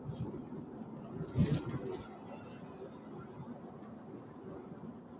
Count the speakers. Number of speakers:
zero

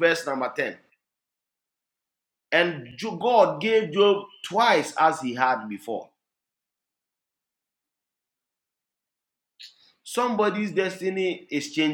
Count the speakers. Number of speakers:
one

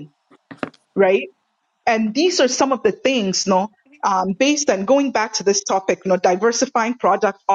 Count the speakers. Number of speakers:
one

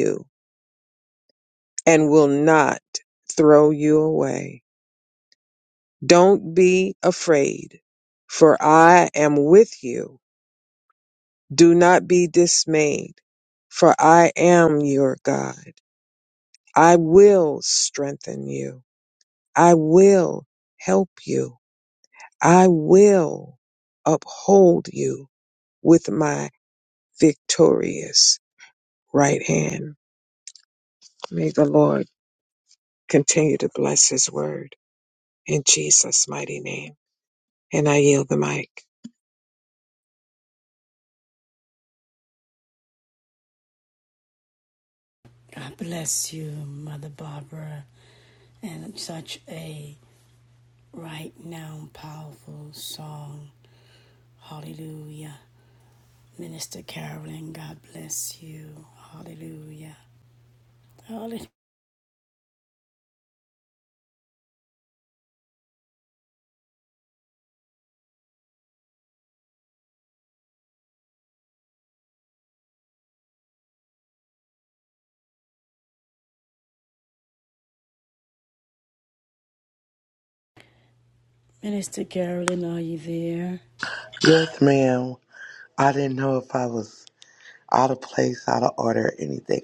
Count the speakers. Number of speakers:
three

